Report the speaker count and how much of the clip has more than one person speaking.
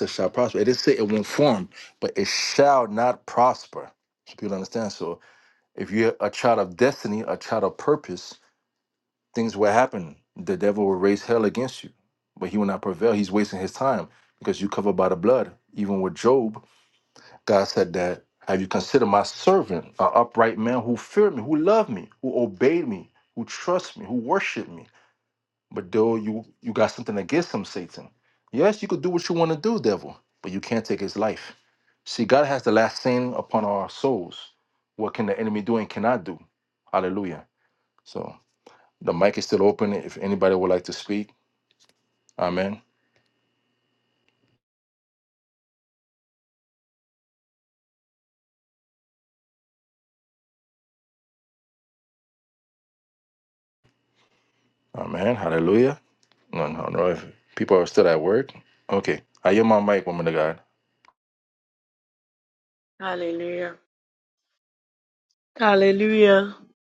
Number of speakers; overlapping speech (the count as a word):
two, no overlap